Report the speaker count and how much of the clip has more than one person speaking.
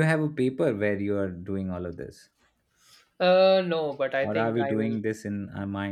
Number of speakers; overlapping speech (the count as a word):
two, about 13%